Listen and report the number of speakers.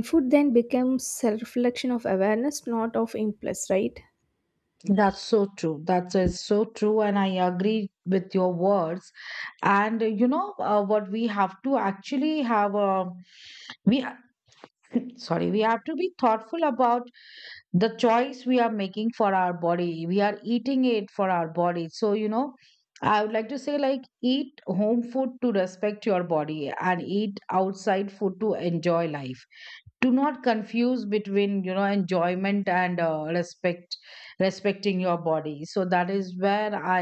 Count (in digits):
2